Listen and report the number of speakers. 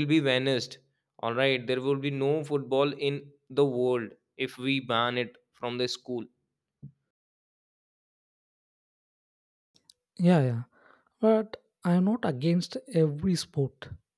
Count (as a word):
two